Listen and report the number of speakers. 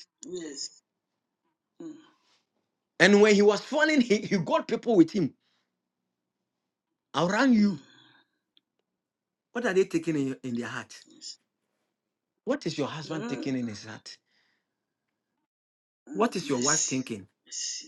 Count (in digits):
2